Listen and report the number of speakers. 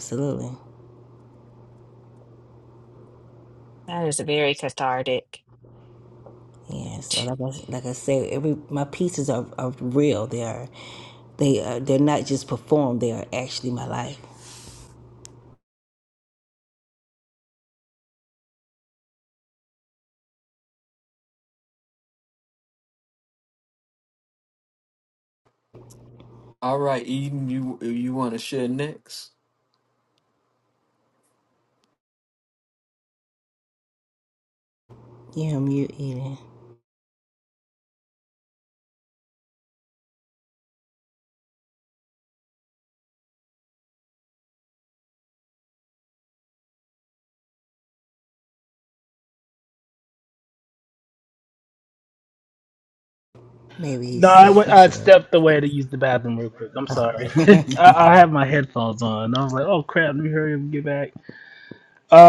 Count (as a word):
four